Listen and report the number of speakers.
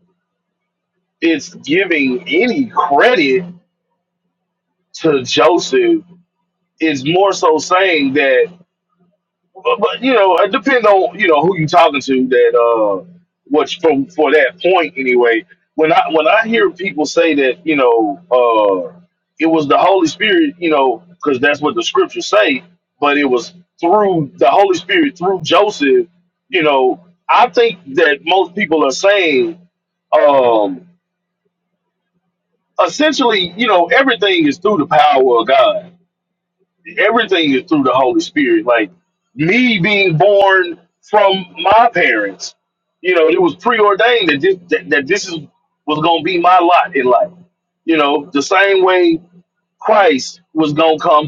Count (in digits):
1